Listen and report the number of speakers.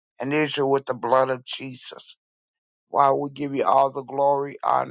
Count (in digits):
1